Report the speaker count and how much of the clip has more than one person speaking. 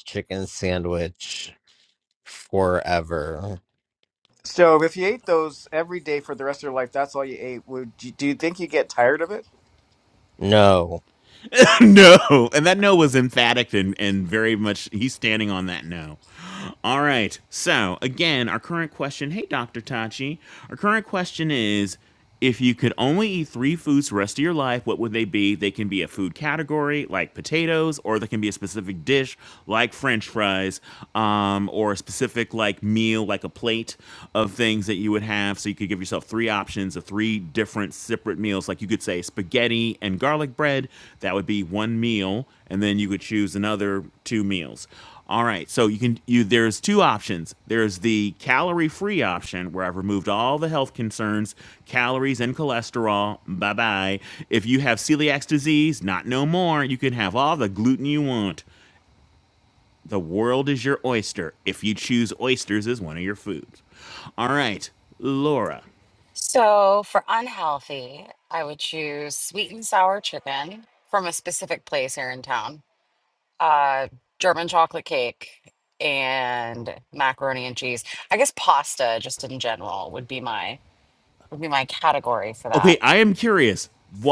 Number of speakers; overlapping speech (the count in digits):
4, under 1%